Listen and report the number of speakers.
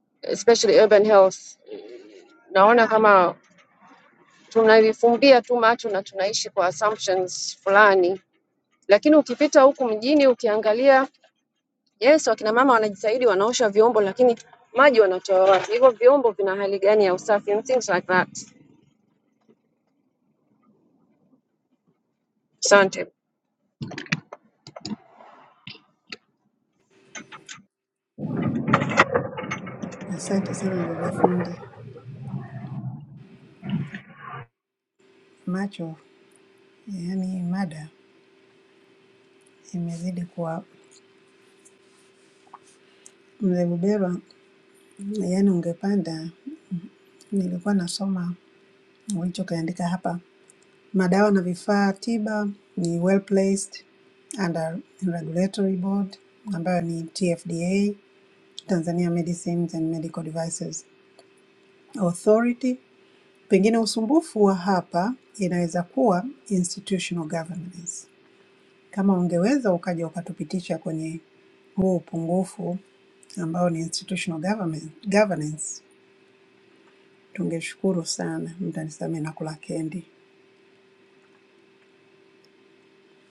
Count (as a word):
two